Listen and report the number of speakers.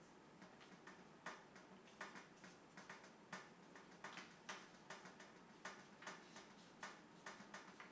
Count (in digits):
0